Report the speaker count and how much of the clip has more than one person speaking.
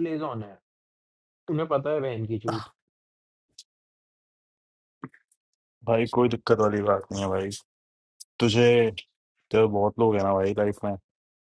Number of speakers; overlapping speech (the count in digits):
2, no overlap